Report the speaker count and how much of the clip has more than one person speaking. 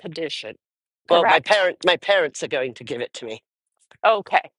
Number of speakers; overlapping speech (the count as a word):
two, about 12%